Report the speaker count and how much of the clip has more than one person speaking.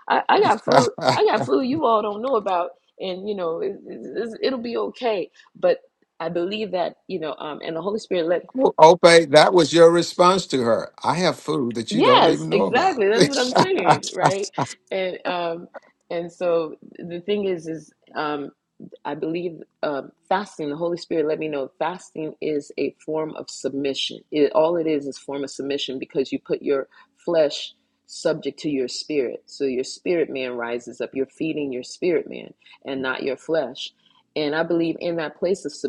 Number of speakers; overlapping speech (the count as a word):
two, about 3%